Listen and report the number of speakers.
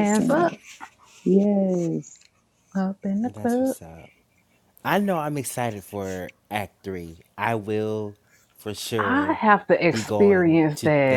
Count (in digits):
3